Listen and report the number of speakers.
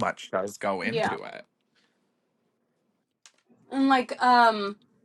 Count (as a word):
two